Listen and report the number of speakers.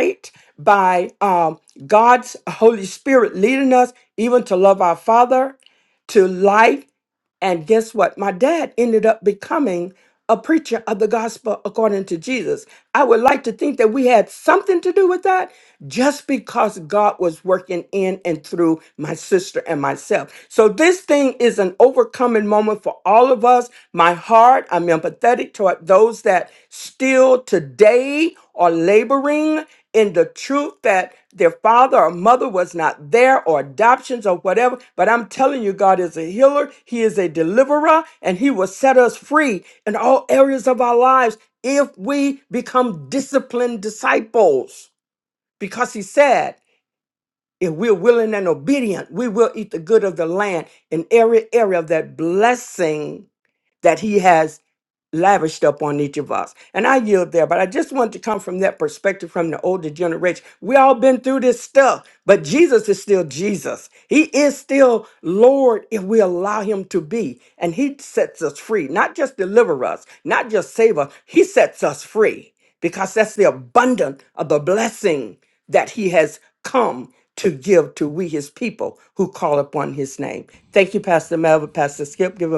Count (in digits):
1